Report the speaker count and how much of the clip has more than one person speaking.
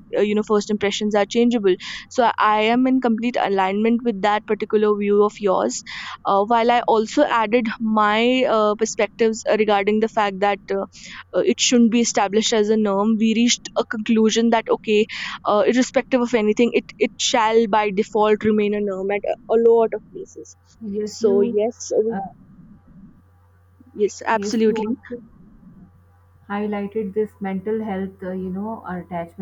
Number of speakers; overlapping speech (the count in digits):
2, about 4%